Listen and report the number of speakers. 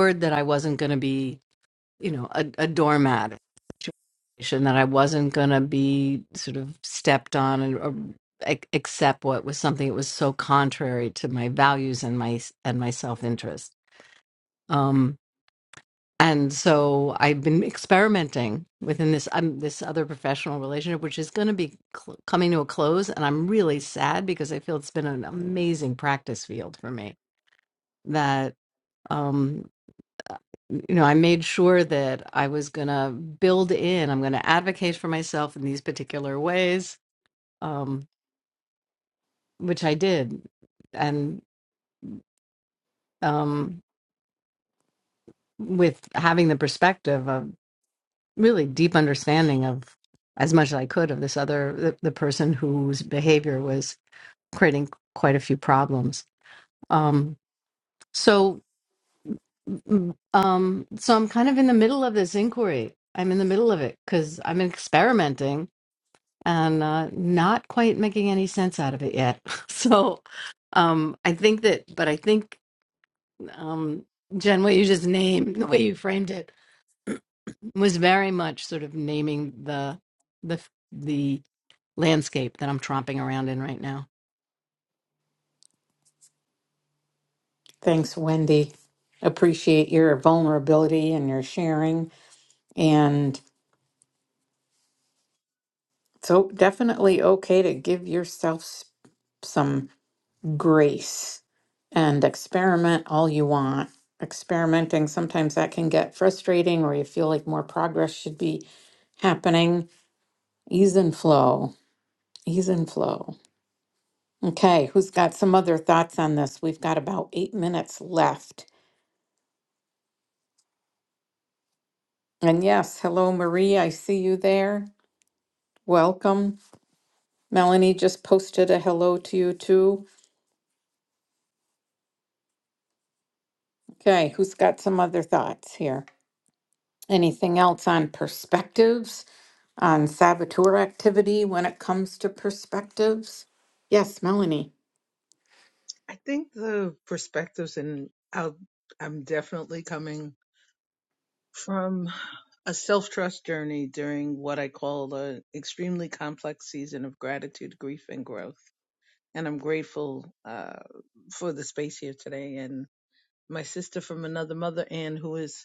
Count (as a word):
three